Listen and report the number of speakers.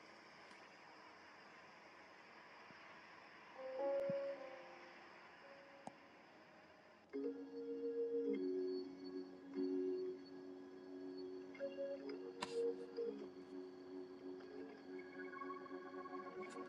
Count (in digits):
0